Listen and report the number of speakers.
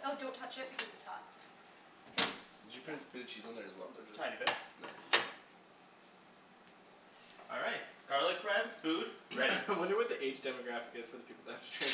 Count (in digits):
4